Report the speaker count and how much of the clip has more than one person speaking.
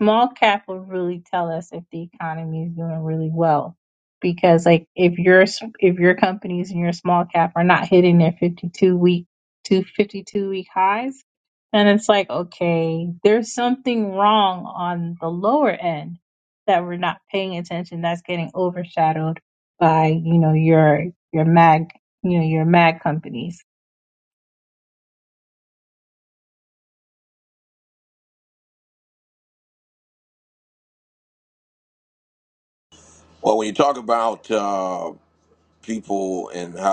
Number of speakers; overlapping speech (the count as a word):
two, no overlap